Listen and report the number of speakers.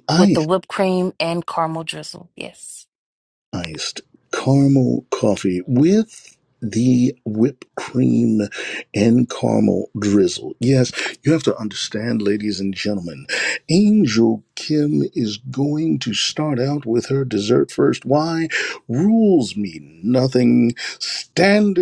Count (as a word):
two